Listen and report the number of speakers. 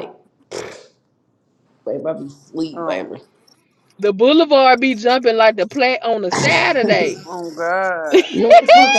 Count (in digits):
3